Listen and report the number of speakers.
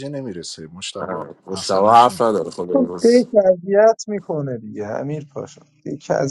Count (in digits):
3